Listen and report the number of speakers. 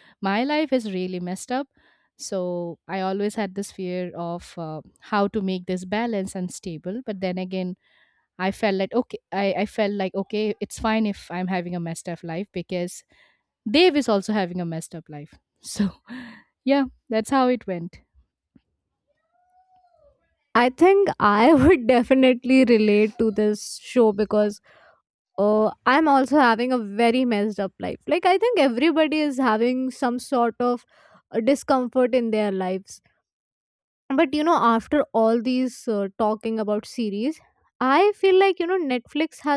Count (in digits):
2